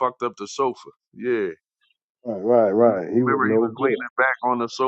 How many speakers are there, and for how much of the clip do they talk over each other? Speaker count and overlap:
2, about 24%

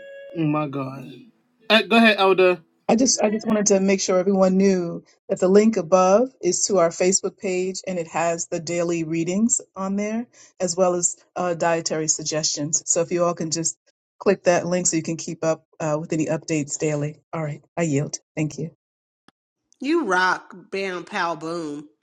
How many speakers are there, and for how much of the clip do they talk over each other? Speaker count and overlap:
3, no overlap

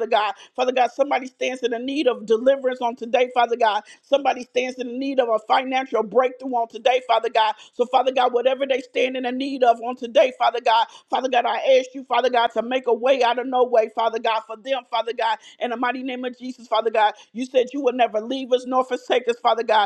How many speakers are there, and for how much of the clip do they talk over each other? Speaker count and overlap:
1, no overlap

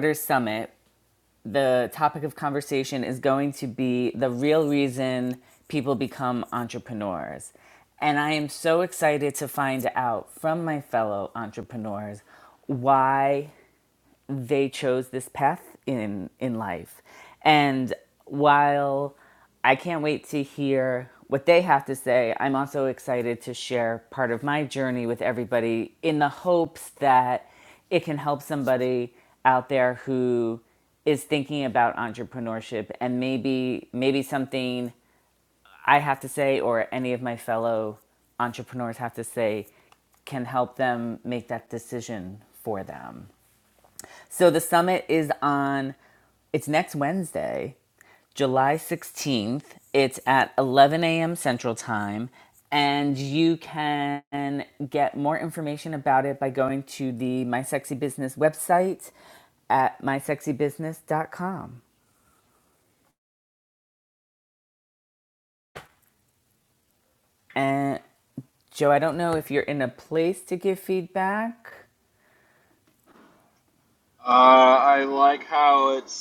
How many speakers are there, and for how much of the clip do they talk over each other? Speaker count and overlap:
2, no overlap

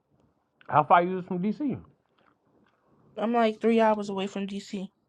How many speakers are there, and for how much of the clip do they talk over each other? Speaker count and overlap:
2, no overlap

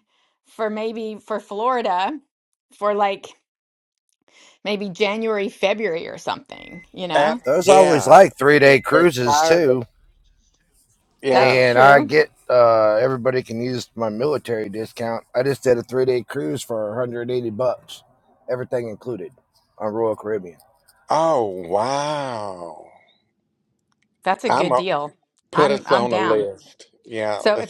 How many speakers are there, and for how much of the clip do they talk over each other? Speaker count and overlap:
3, about 18%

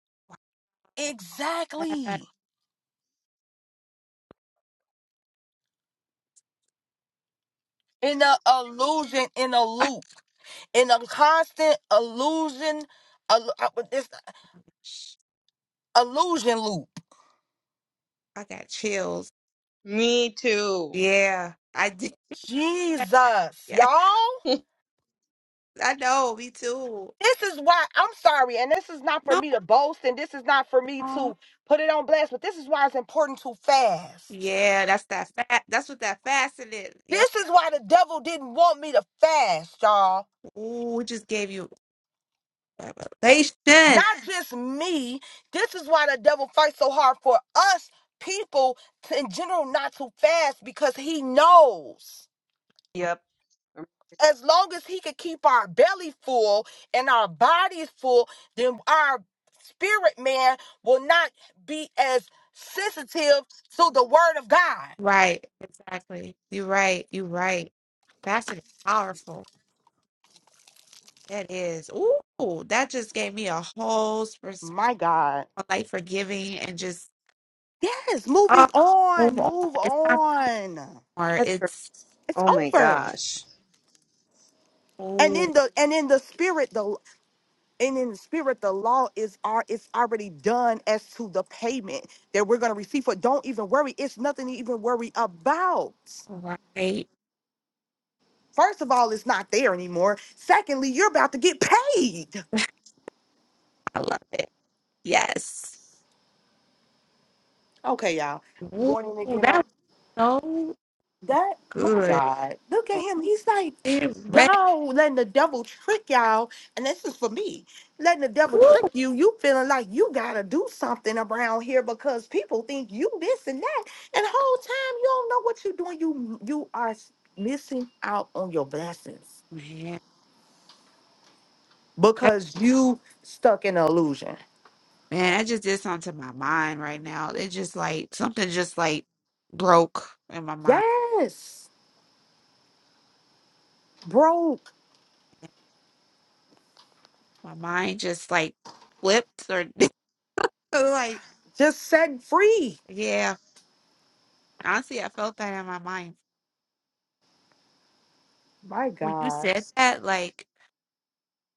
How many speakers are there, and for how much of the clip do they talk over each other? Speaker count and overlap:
3, about 3%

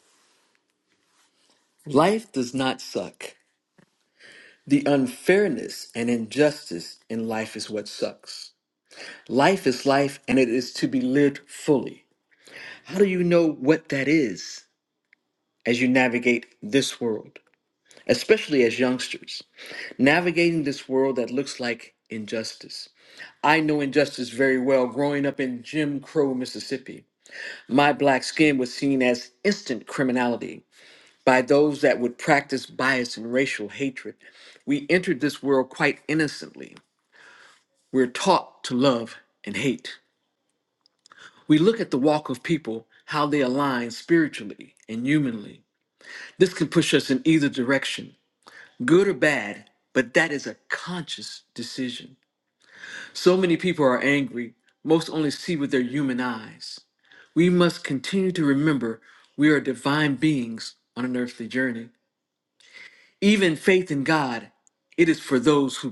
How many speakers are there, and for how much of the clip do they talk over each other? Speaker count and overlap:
1, no overlap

